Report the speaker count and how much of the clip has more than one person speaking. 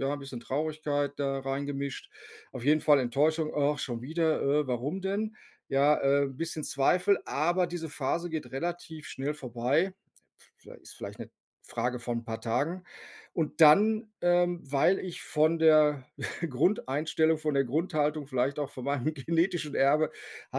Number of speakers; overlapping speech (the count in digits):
1, no overlap